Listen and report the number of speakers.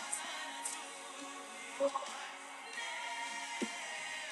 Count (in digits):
0